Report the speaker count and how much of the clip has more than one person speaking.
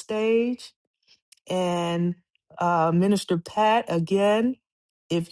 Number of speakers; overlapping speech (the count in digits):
1, no overlap